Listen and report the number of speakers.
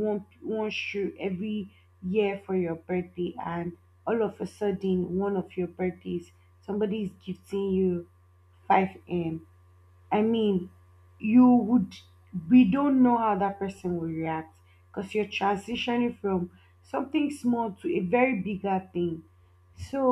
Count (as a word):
one